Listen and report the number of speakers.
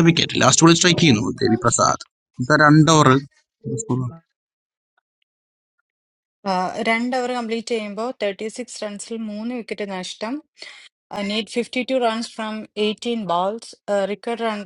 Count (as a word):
two